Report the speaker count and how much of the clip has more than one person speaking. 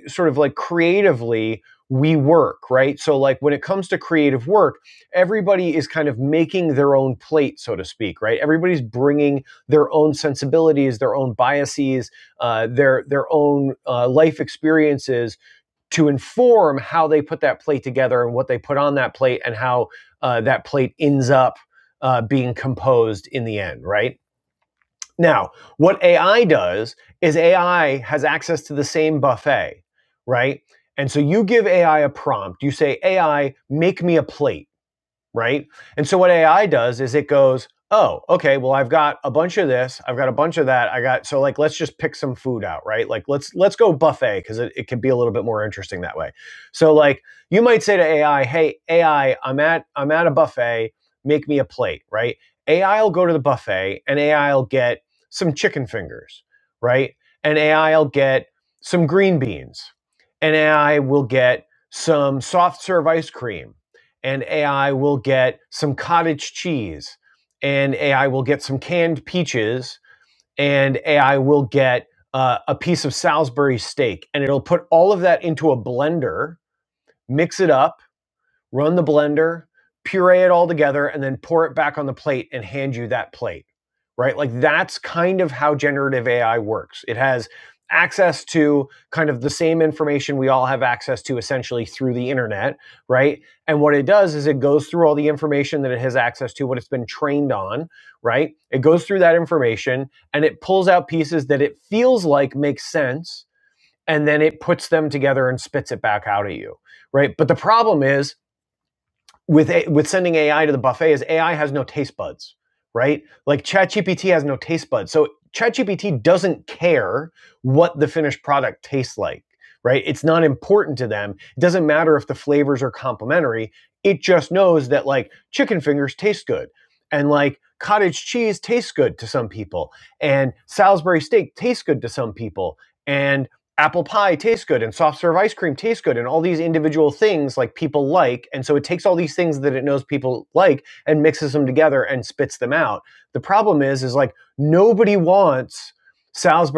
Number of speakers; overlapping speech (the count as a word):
one, no overlap